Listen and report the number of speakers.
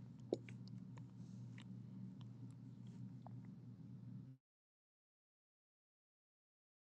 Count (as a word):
zero